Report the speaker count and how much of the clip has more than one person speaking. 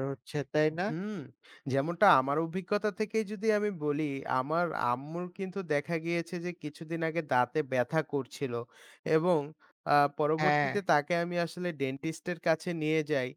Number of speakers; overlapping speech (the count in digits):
2, about 3%